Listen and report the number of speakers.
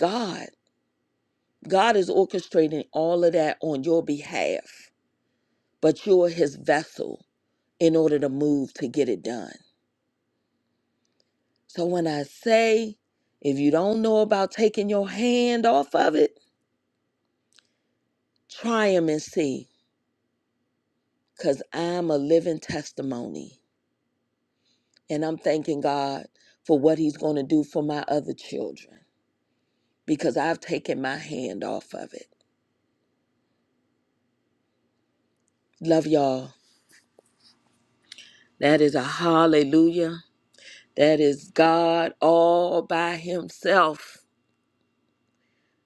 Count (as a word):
one